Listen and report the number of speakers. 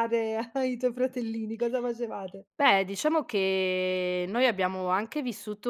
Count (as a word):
two